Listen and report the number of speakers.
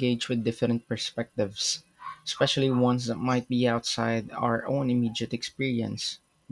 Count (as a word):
one